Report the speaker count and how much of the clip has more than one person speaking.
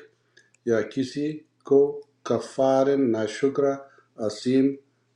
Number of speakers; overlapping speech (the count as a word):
one, no overlap